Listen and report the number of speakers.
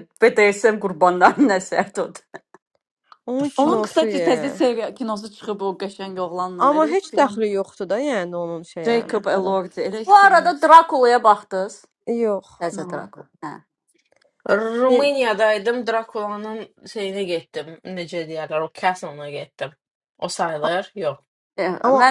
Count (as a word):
four